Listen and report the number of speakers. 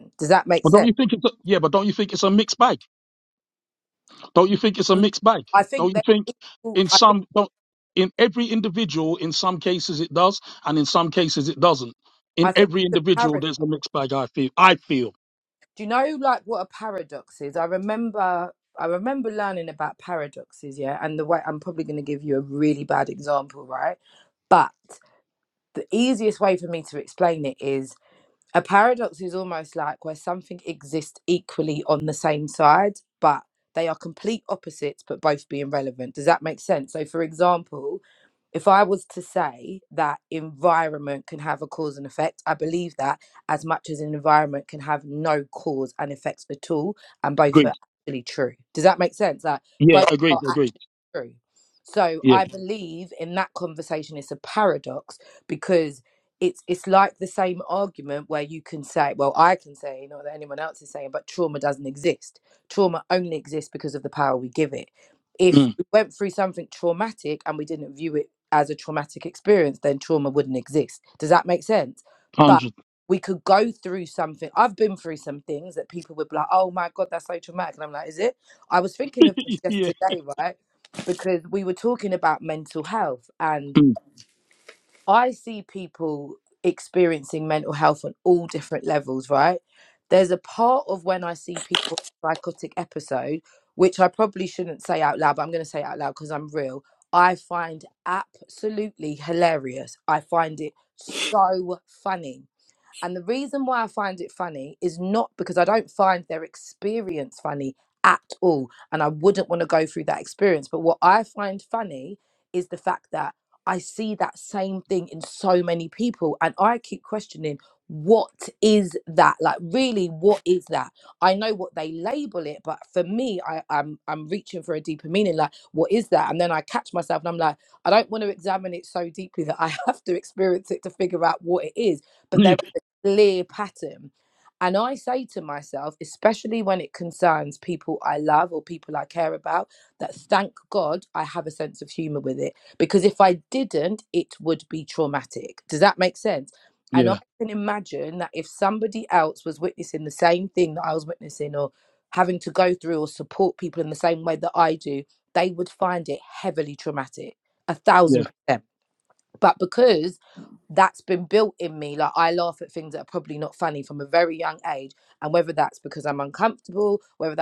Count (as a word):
two